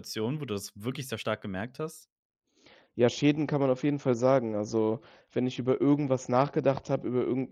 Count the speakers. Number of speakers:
2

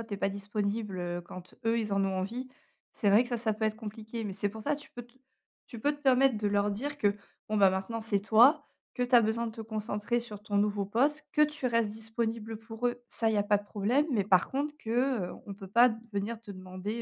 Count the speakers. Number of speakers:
1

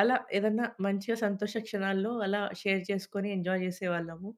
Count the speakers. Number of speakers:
1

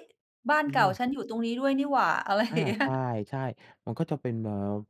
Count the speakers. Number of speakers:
2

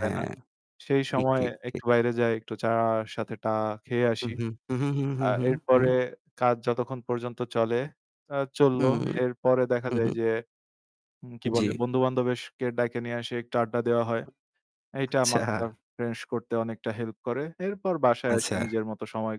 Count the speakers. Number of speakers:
2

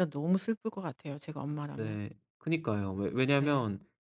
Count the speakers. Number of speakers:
2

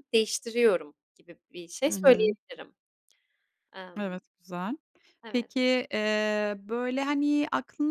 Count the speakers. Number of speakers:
2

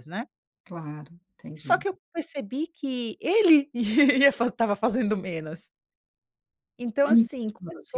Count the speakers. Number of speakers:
2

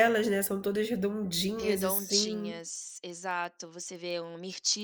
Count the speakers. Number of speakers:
2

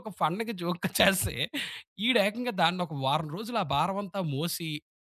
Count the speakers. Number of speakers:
1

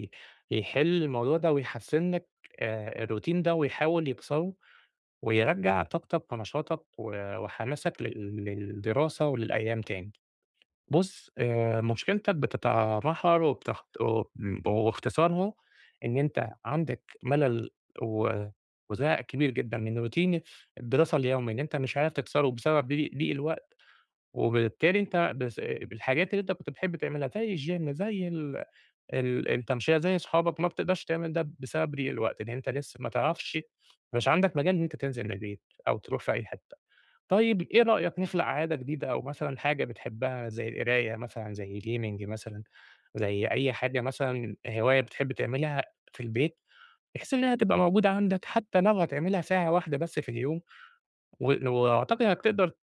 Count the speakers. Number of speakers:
1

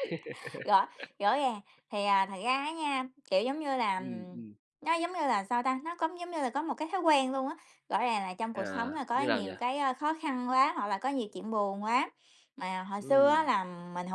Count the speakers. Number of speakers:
2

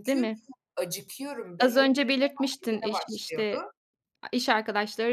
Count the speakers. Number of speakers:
2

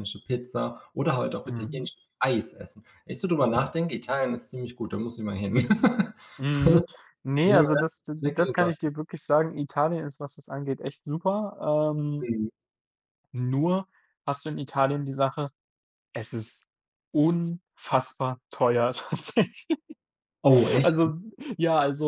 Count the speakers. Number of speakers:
2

